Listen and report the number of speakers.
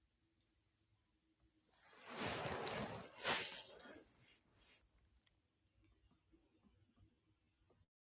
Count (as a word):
zero